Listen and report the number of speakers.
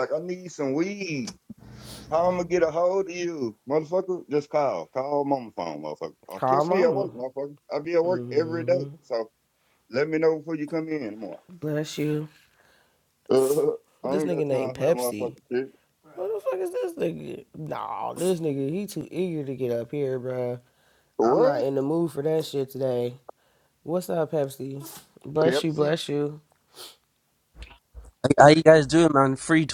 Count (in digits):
3